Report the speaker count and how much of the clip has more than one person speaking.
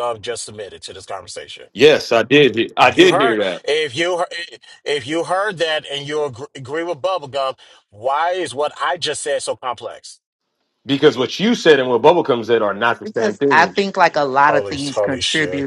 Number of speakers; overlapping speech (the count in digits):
3, about 17%